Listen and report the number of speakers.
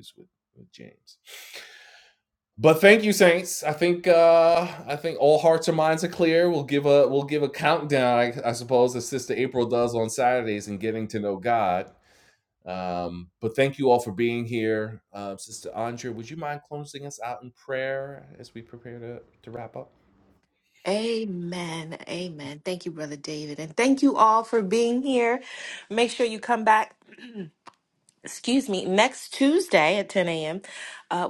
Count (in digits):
2